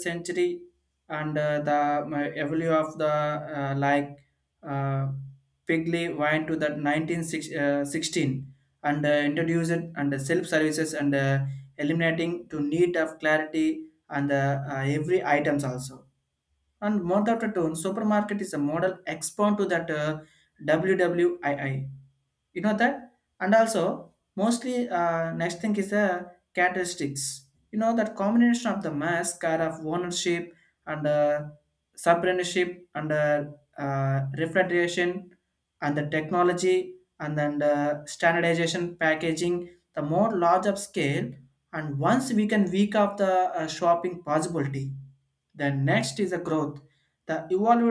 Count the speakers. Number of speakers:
1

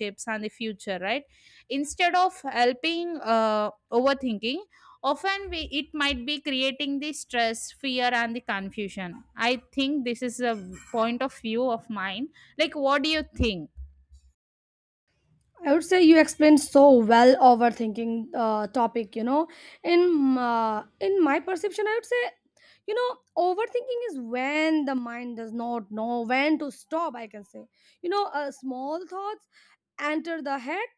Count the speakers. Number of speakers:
2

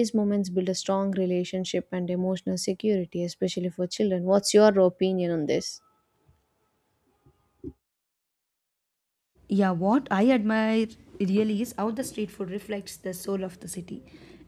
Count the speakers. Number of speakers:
2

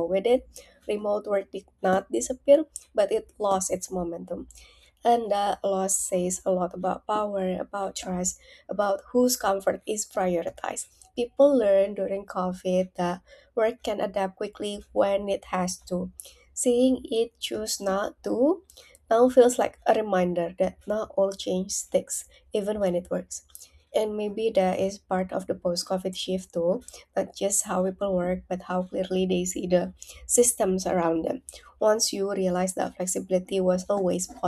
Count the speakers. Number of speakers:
1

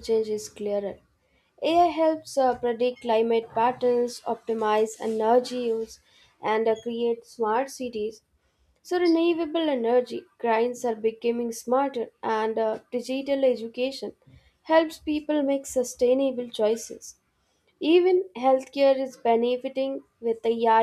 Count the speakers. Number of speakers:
1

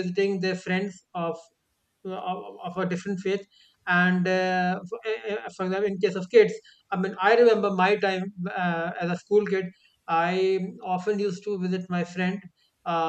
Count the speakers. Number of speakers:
1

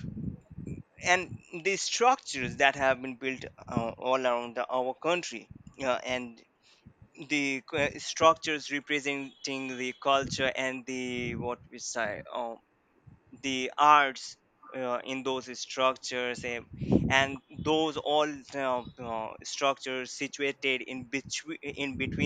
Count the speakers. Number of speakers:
1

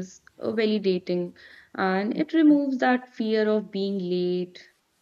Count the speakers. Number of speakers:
1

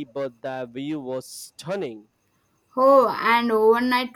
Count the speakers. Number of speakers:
2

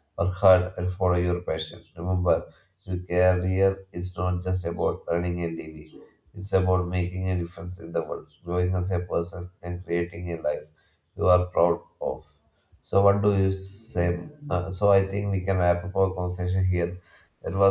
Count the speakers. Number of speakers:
1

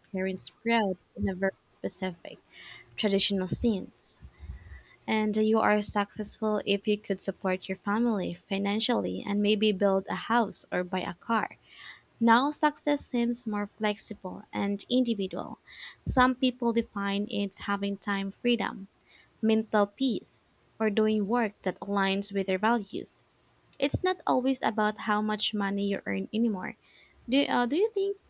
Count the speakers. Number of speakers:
1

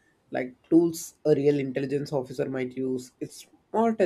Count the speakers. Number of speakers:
1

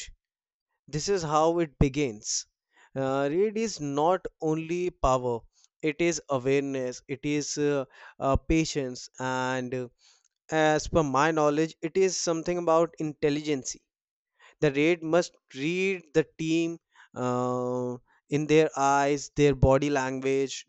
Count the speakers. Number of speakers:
1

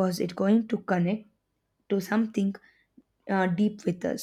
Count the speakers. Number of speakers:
1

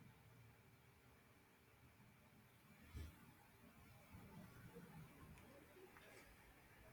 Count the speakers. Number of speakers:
0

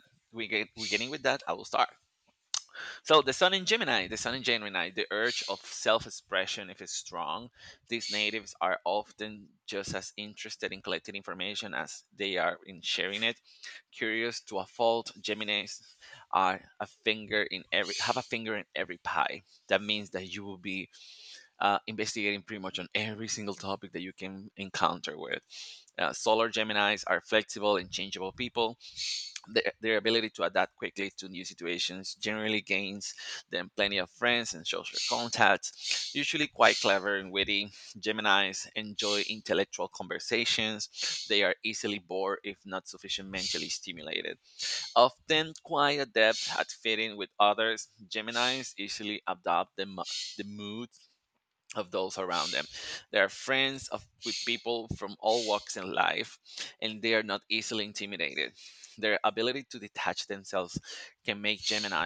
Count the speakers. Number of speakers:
1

